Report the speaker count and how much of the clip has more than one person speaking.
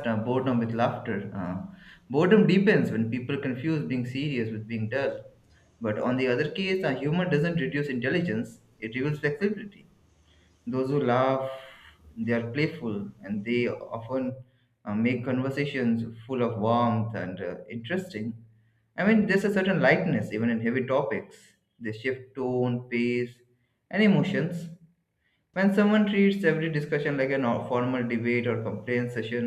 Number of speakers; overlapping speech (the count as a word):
one, no overlap